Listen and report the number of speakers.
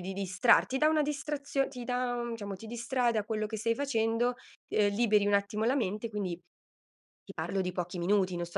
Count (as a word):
one